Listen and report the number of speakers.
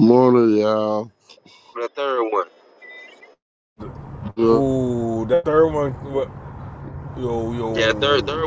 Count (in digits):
3